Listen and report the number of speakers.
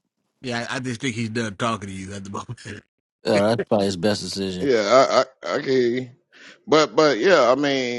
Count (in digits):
3